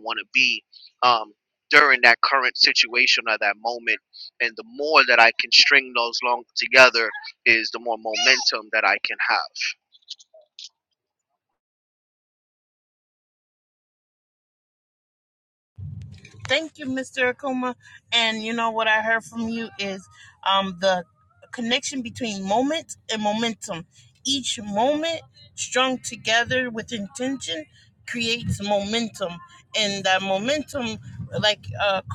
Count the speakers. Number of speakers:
2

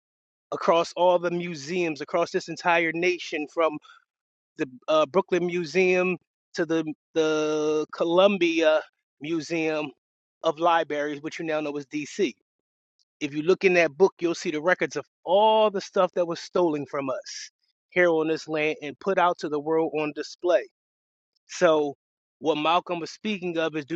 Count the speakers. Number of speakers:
1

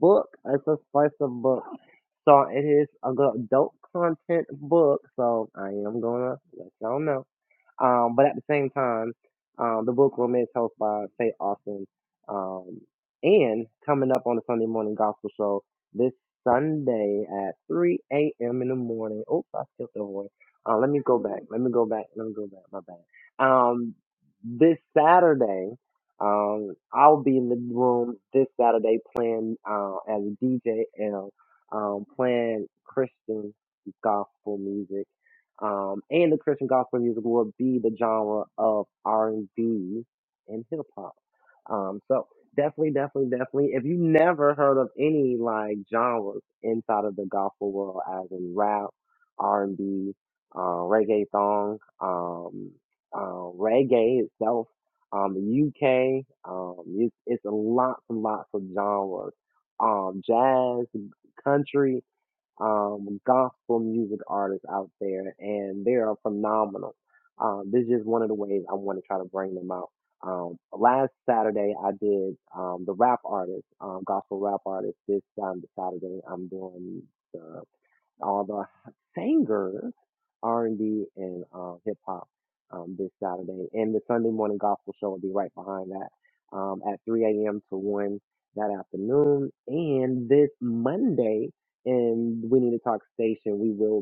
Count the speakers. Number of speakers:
1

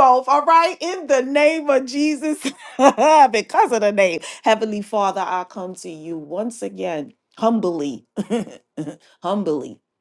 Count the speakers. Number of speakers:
1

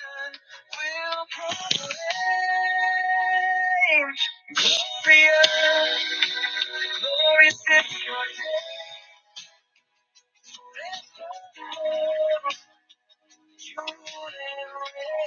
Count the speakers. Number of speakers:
1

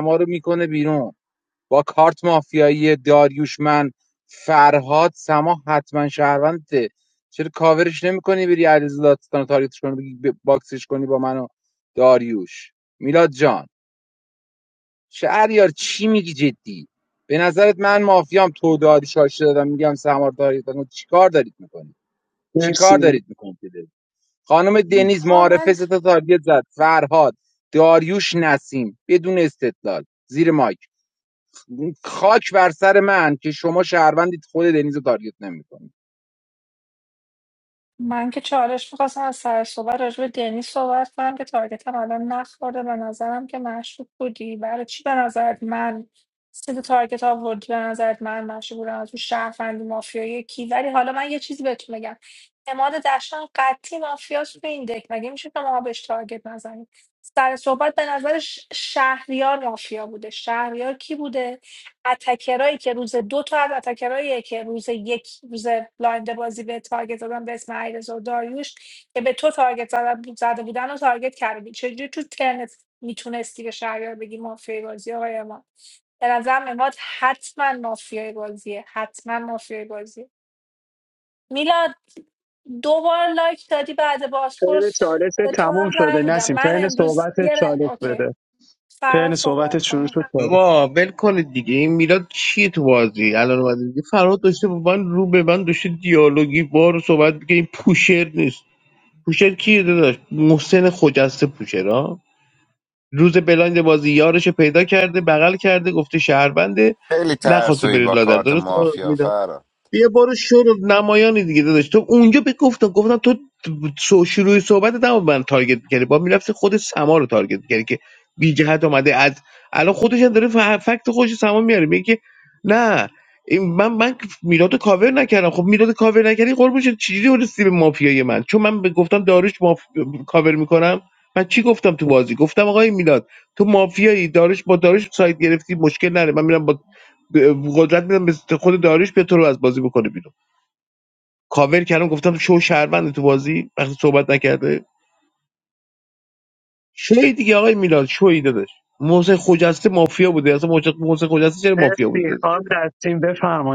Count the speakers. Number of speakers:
5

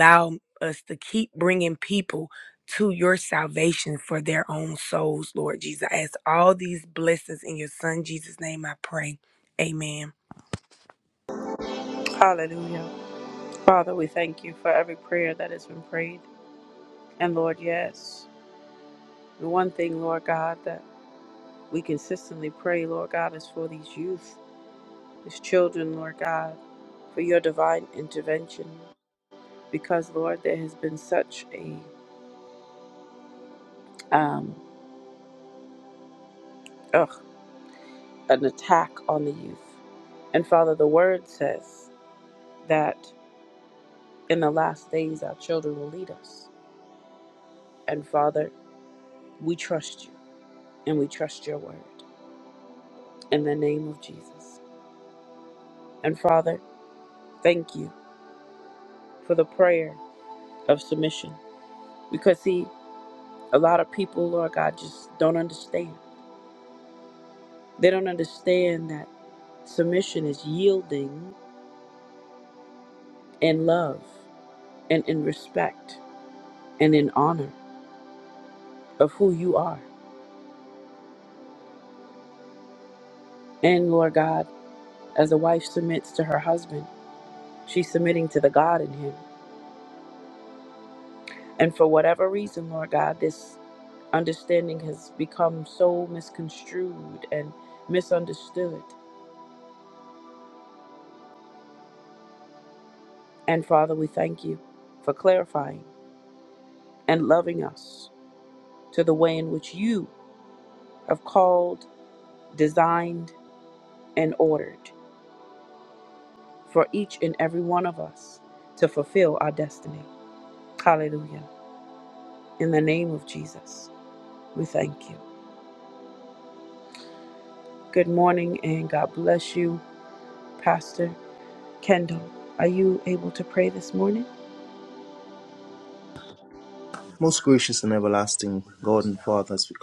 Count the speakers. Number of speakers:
3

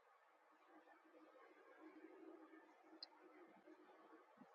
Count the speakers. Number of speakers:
0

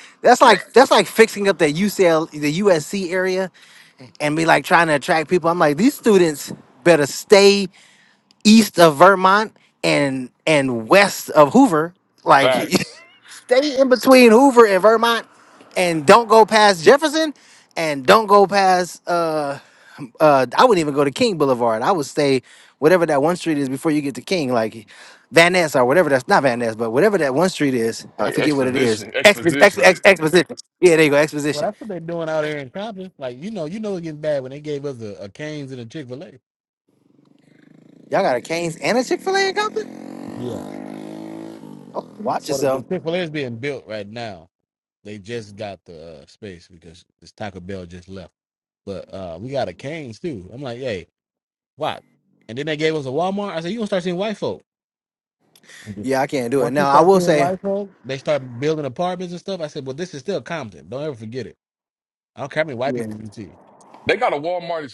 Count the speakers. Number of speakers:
3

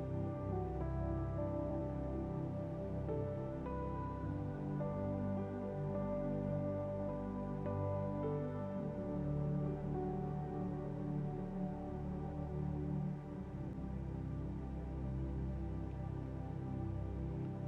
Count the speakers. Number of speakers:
0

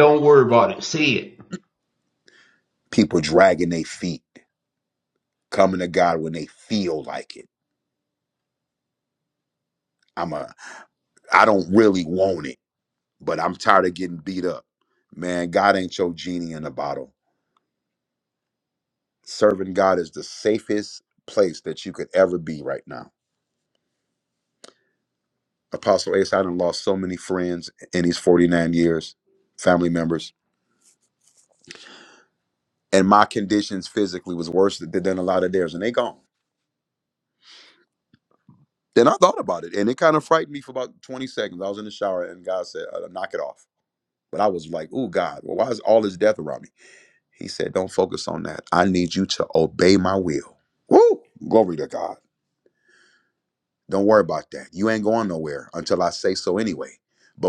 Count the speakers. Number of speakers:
2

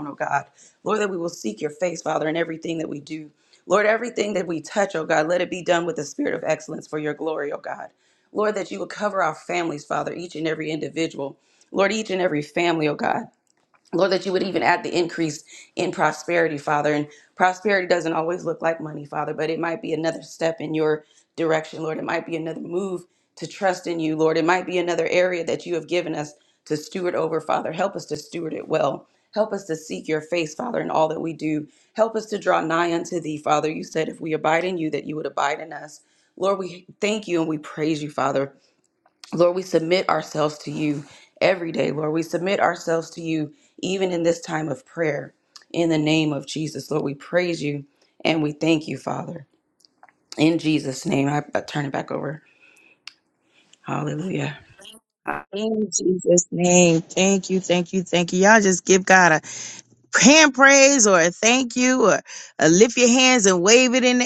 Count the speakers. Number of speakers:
2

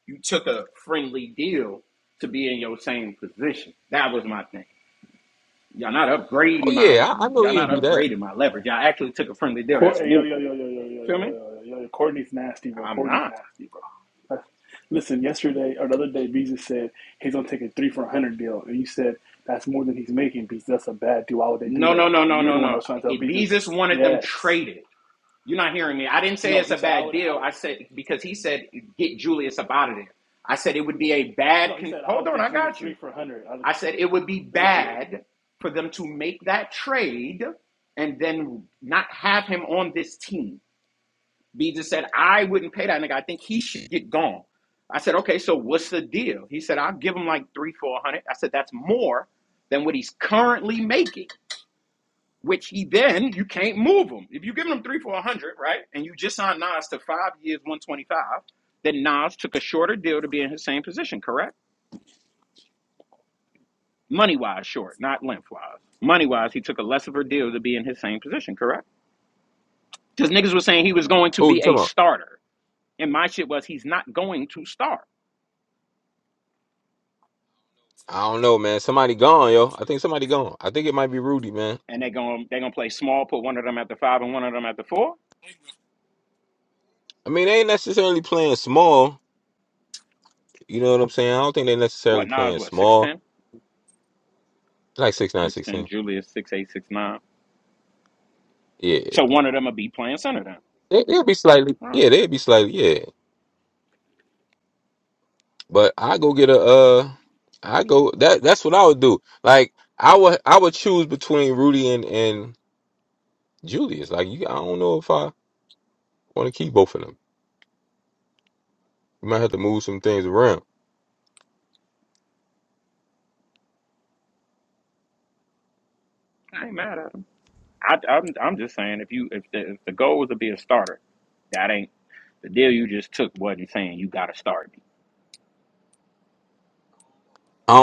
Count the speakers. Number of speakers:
3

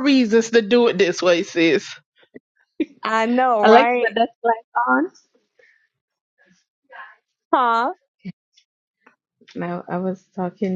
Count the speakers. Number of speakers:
3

